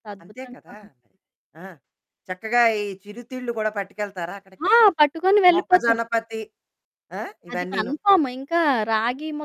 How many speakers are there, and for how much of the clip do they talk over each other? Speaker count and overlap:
two, about 16%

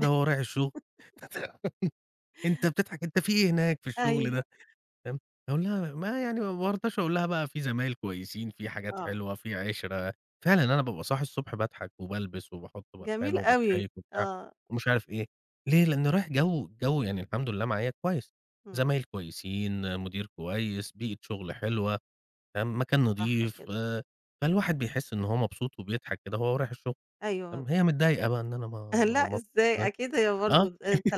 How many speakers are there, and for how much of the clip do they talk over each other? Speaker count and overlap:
two, about 10%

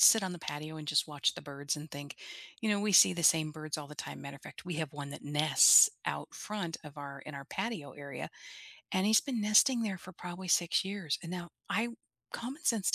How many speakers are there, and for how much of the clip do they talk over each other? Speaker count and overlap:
one, no overlap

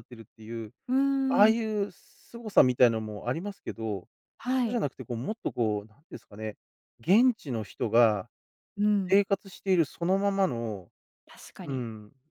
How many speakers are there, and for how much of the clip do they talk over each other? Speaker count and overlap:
two, about 5%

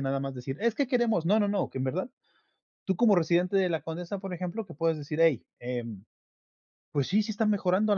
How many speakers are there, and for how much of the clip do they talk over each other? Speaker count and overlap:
one, no overlap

